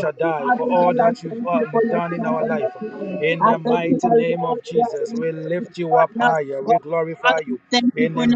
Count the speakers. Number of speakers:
2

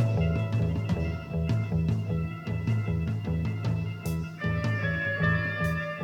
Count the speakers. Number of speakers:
0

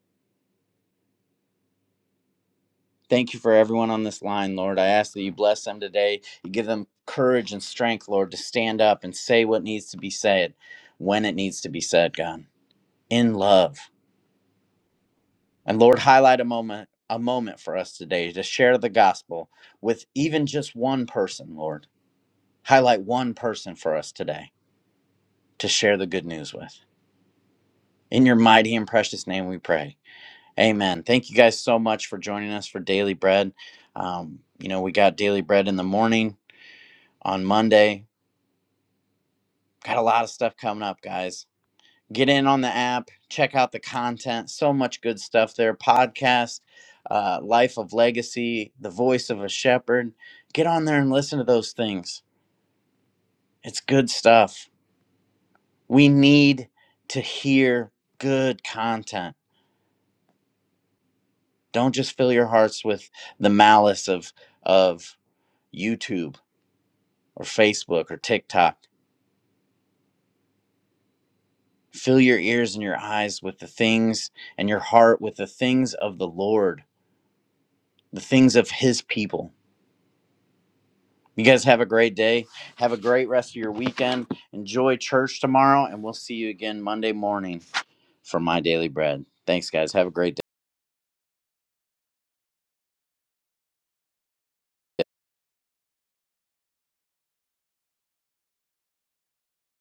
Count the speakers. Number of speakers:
1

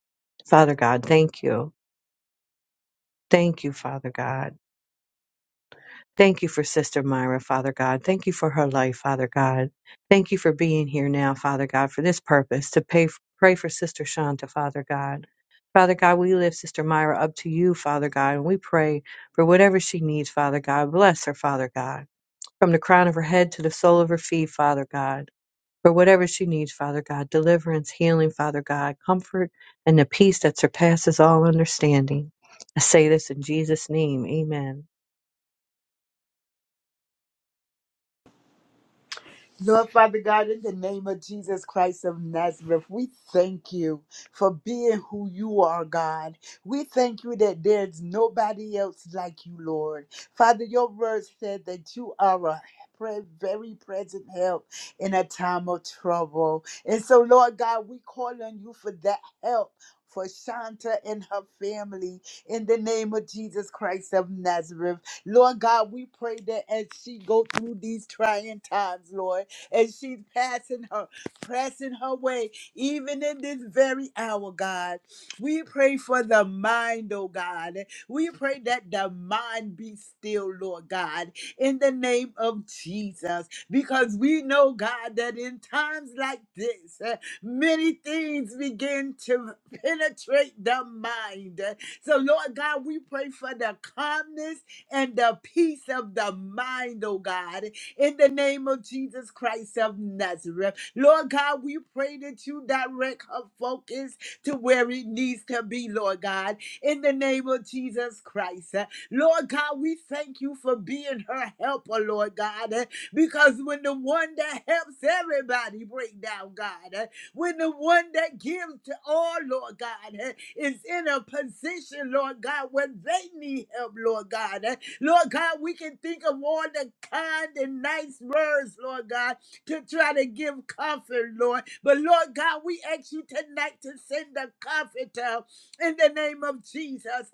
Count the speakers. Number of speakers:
2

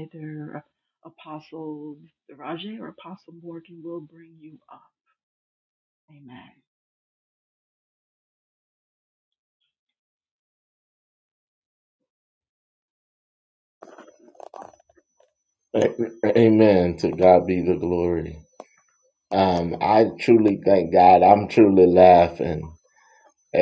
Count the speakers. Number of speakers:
2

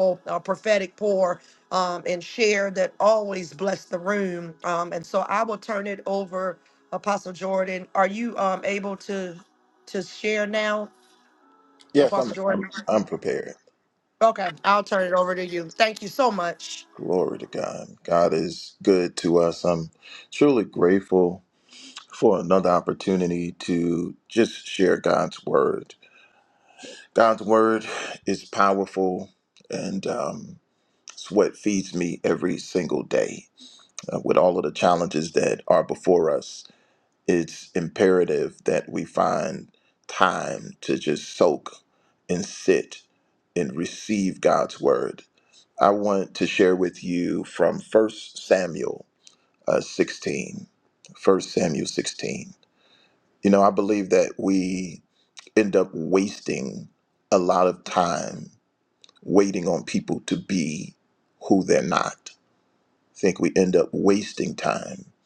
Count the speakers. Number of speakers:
2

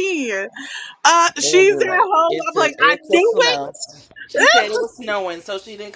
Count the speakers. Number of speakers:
2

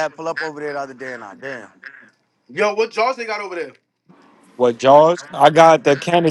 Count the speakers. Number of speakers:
3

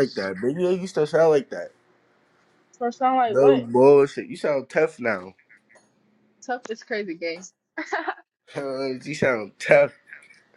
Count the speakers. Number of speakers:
2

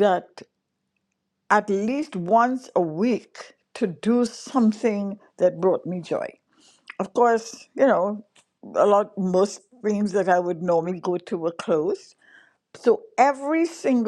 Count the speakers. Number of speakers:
1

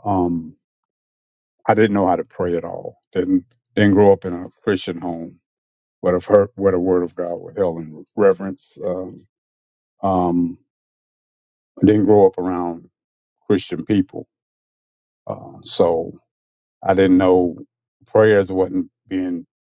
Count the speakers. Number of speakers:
1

